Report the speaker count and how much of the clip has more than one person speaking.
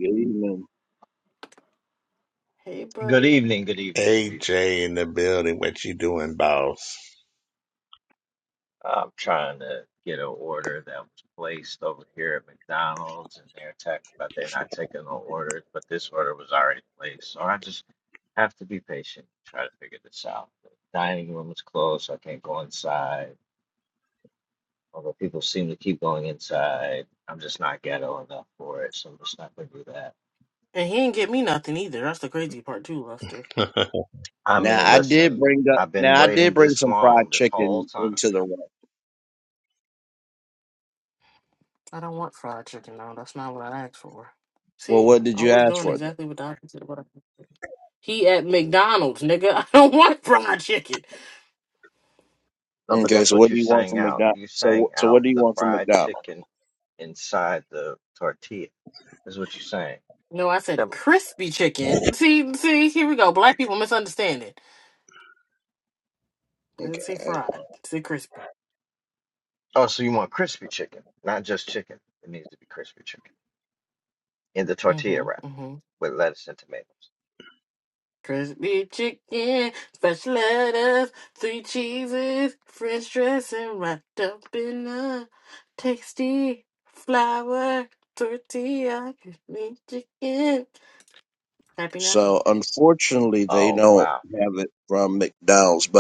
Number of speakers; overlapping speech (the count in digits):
4, about 11%